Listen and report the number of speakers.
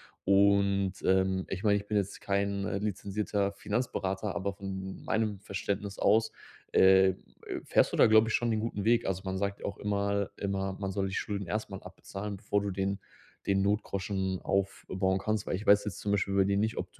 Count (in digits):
1